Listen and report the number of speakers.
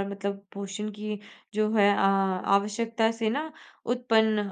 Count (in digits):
1